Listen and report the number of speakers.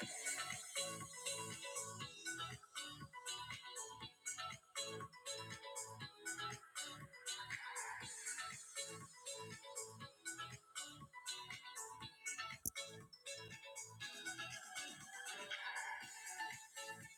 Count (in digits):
0